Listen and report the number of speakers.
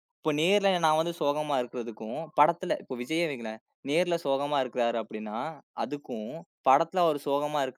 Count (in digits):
1